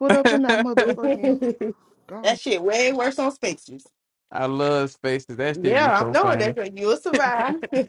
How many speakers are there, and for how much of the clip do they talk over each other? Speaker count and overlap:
3, about 27%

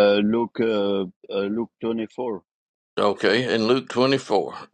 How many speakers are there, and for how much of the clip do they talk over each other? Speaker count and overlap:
2, no overlap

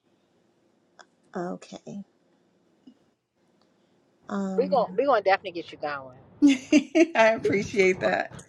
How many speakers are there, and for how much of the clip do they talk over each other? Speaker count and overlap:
3, about 4%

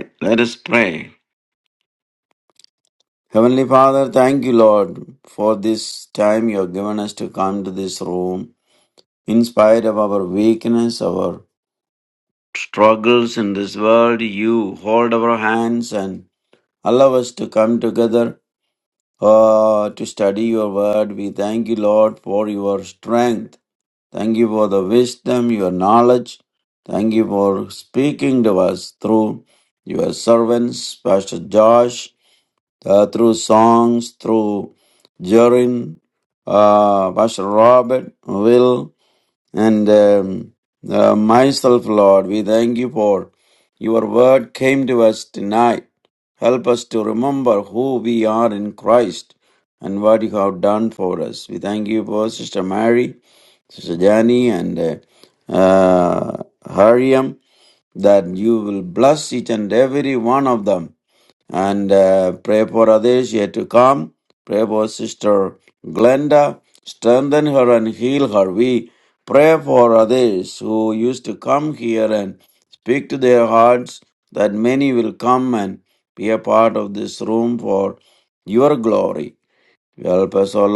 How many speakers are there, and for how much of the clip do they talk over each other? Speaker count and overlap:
1, no overlap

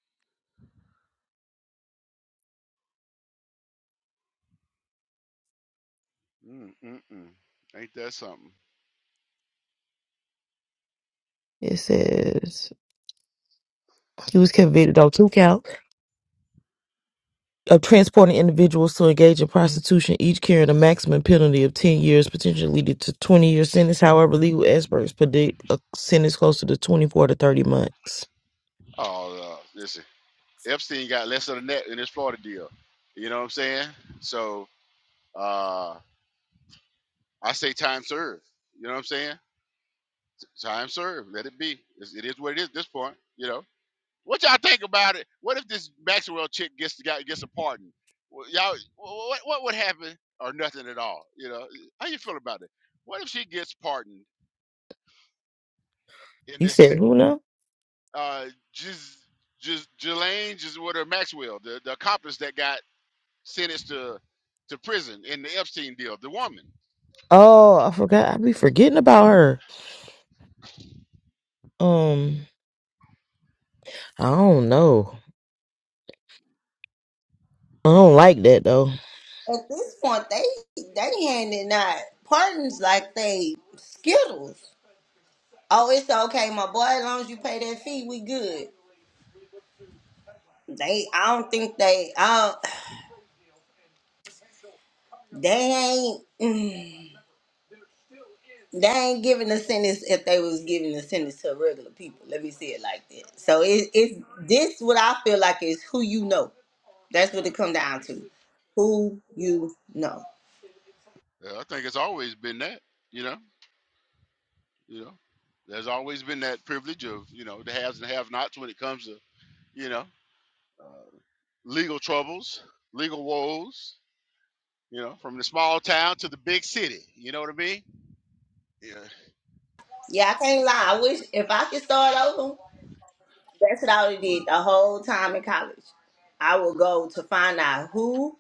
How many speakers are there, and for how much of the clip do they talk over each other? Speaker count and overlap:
3, under 1%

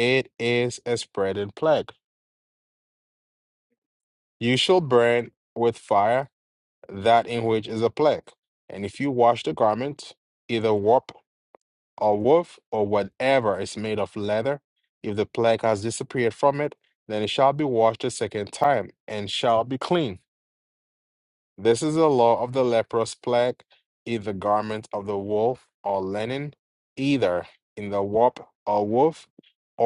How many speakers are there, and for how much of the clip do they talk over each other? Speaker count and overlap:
1, no overlap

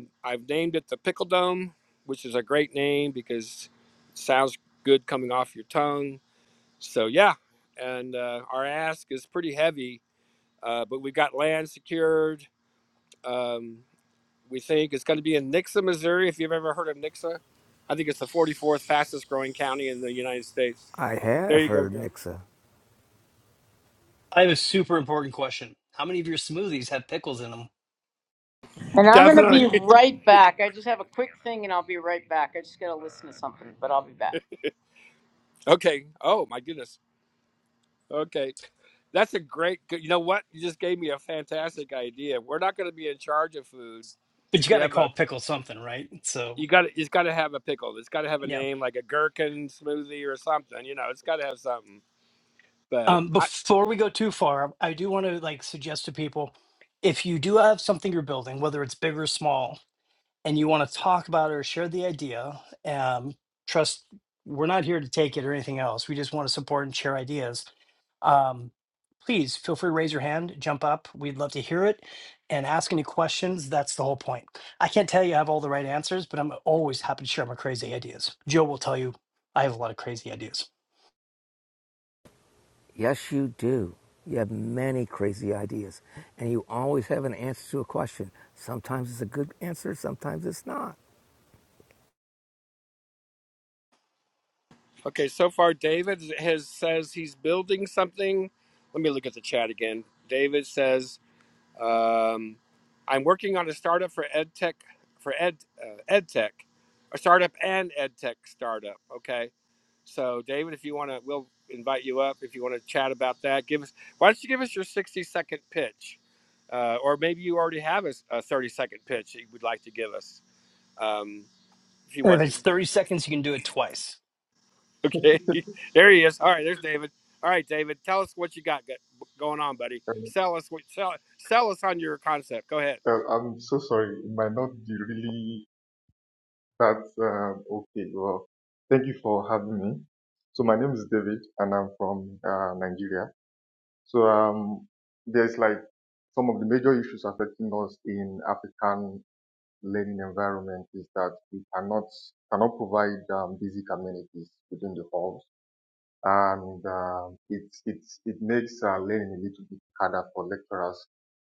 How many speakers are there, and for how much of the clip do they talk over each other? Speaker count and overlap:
5, about 1%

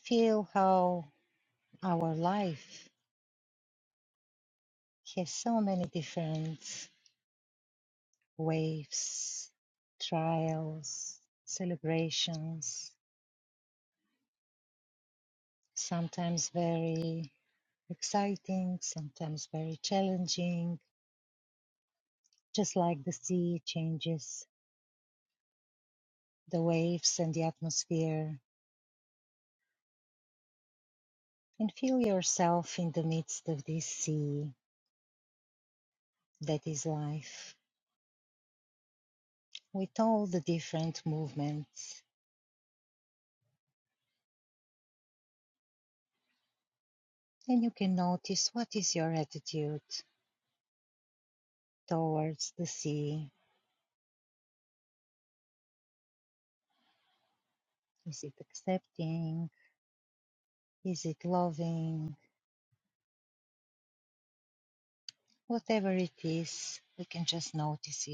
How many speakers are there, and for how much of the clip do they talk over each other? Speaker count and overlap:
1, no overlap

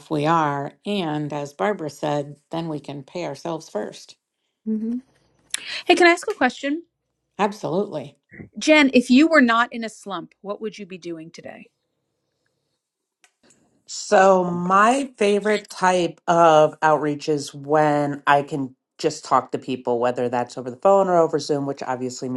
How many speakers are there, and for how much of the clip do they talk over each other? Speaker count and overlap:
3, no overlap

